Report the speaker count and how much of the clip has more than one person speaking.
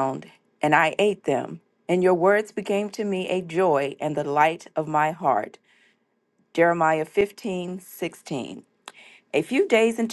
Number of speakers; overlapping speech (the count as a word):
one, no overlap